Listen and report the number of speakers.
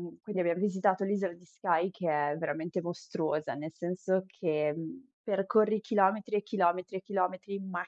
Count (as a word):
one